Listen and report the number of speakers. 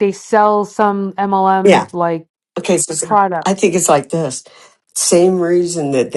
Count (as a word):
two